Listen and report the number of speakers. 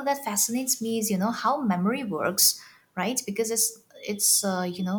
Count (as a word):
one